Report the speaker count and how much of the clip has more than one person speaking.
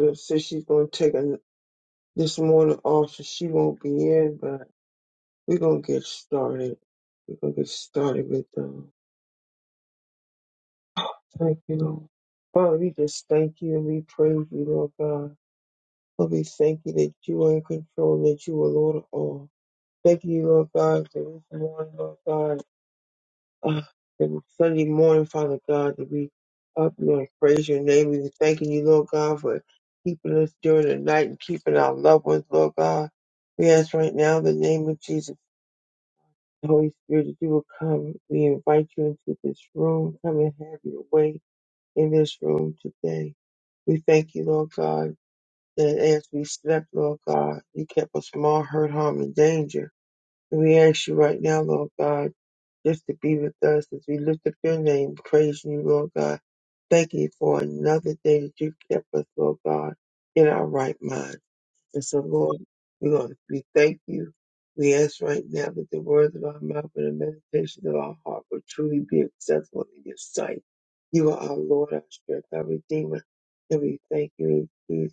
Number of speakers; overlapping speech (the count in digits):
1, no overlap